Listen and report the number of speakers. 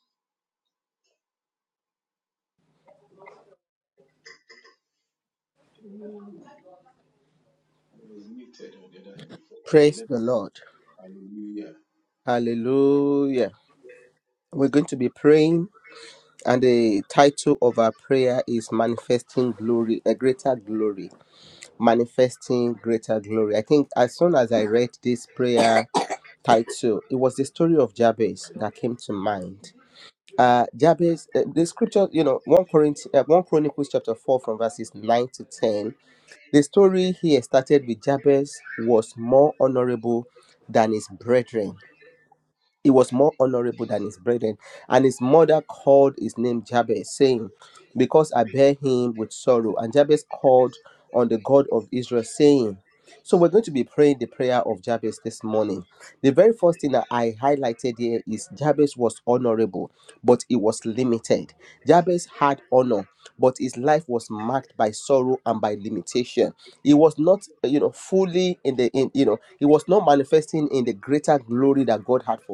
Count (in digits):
2